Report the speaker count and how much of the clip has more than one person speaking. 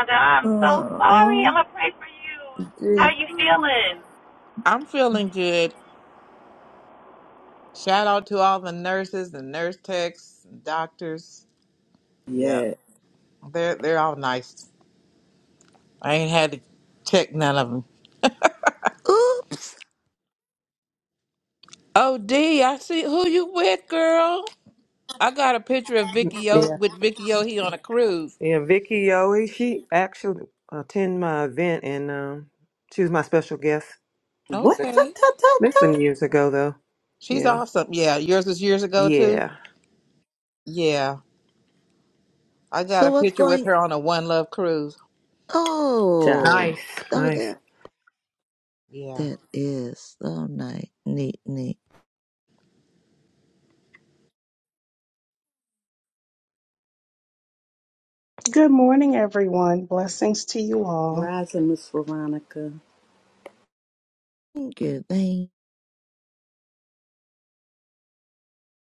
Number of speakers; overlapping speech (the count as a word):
six, about 8%